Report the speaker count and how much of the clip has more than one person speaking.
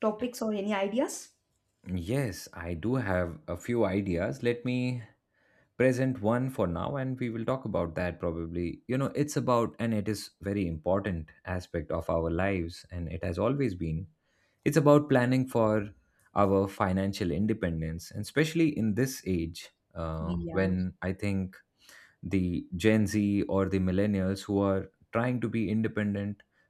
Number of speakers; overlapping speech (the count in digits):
2, about 2%